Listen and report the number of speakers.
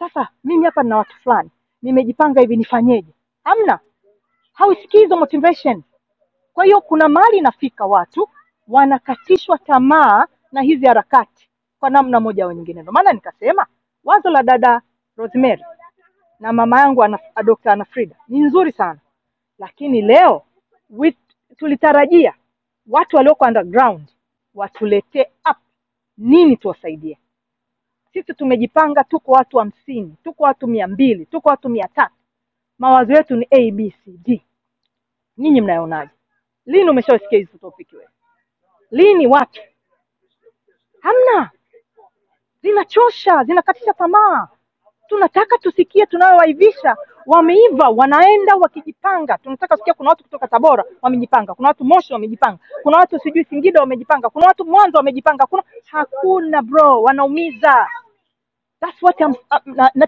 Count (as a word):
one